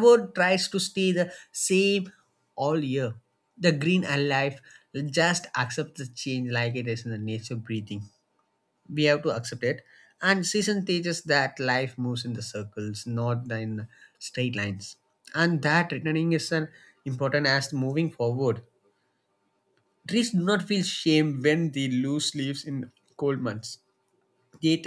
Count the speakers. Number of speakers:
1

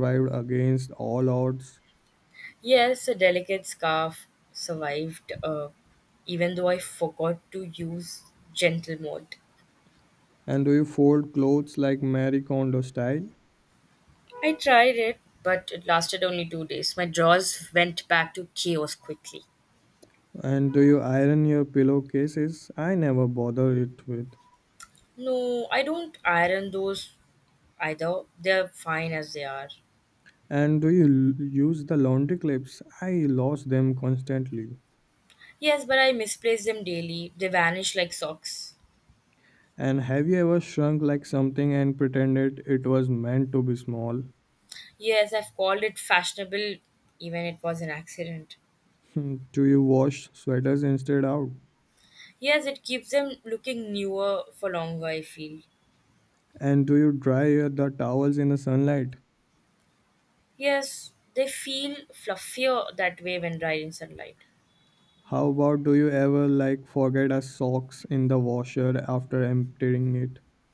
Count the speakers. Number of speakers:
2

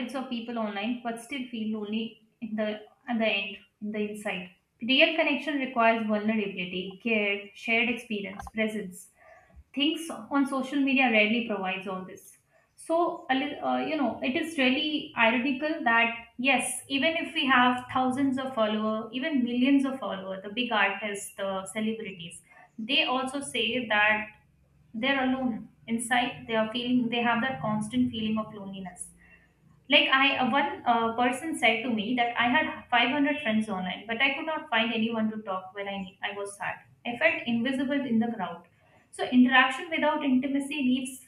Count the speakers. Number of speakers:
1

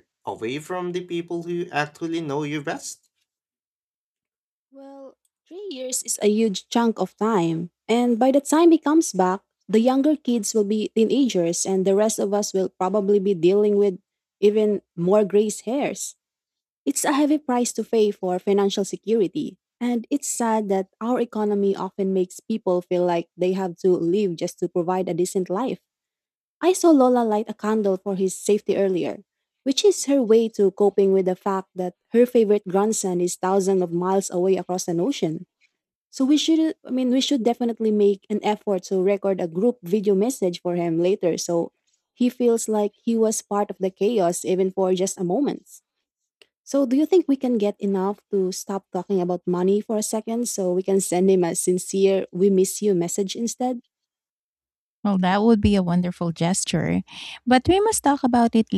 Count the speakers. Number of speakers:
3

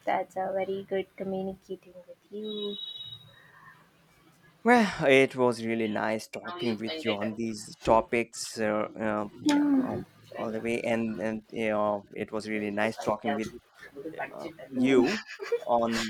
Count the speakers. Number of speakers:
2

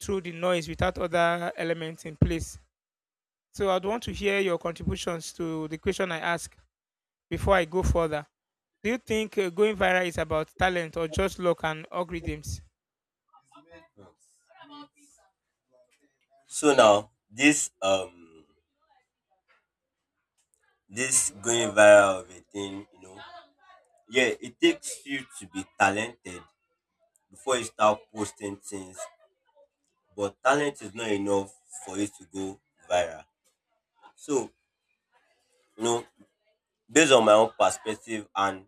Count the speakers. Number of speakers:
2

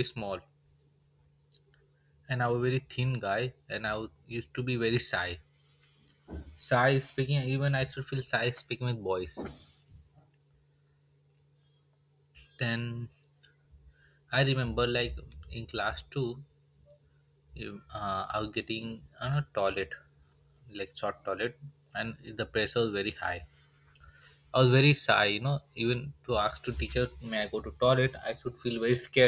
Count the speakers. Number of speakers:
1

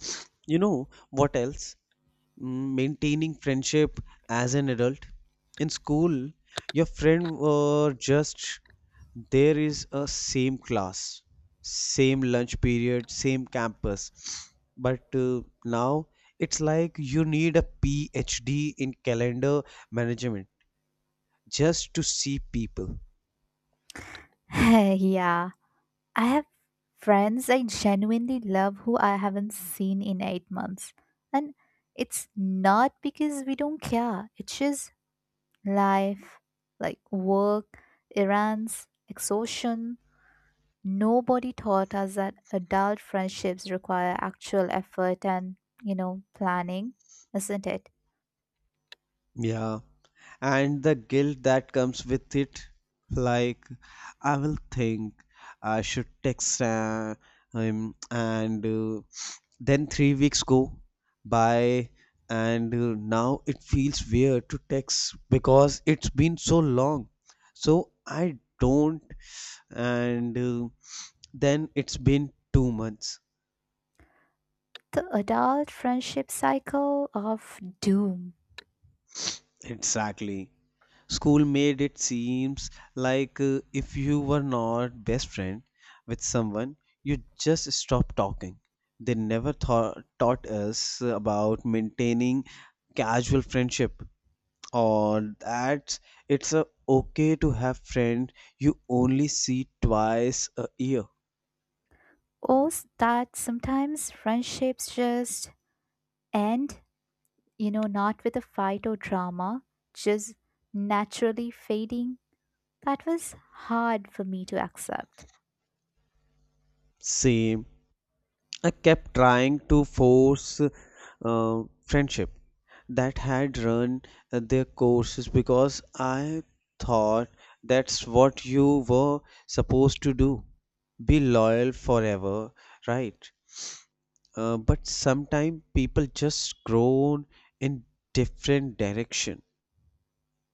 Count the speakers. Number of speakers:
2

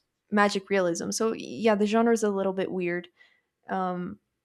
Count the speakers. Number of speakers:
1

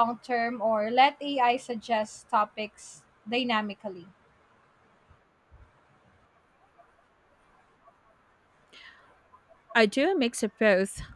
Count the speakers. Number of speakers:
2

